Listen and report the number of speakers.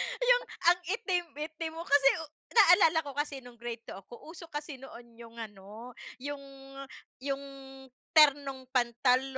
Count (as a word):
one